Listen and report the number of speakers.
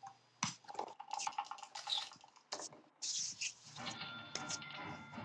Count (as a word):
zero